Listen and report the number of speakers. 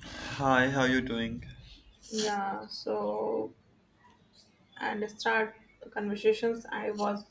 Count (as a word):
two